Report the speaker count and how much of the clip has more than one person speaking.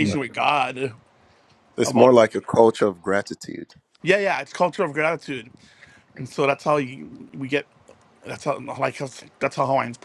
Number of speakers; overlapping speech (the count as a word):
two, about 5%